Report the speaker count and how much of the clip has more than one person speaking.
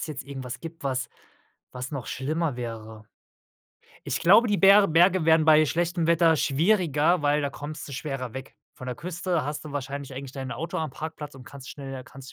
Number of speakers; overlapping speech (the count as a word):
one, no overlap